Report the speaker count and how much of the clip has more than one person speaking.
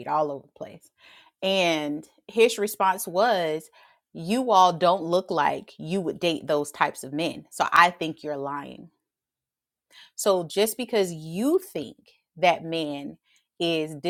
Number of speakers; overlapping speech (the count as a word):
one, no overlap